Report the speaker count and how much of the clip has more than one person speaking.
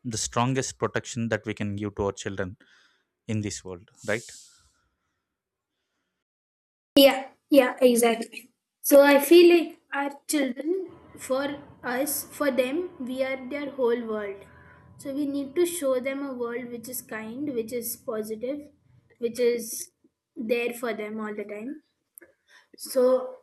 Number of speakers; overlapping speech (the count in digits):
2, no overlap